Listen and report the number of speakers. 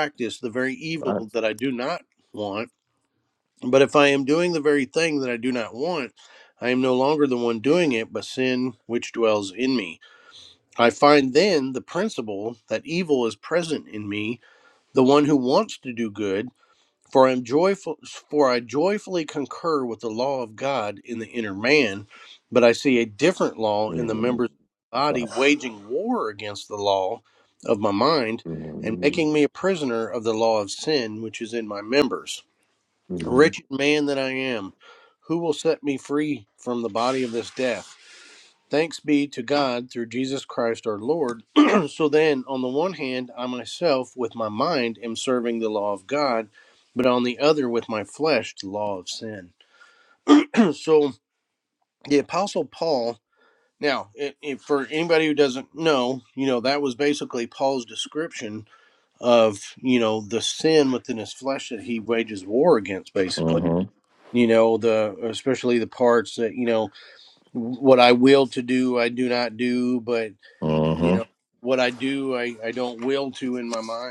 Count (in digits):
2